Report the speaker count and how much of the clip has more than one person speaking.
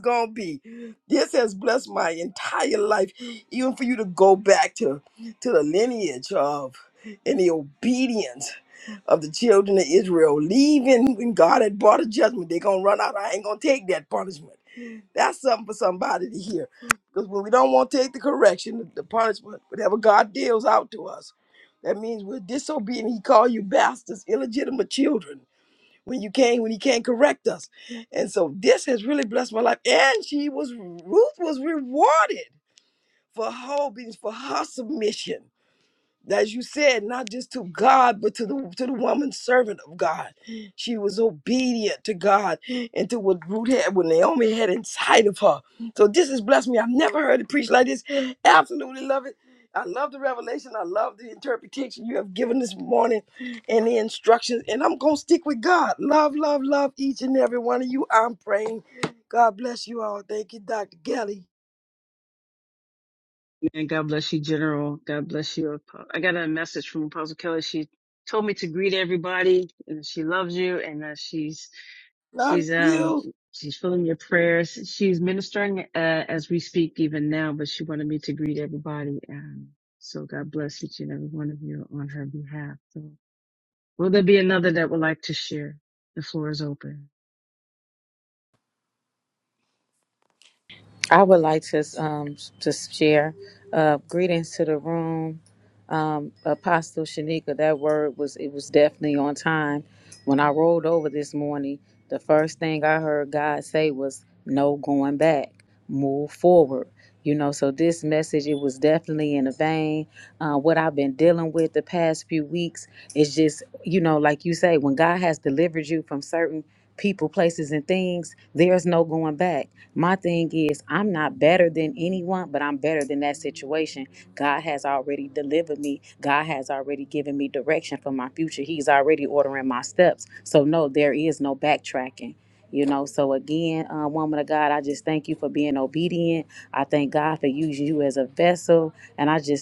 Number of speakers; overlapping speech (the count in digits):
3, about 1%